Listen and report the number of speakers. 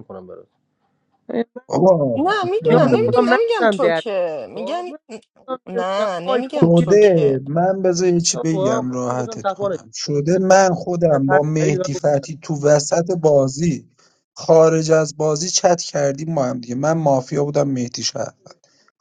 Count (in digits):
3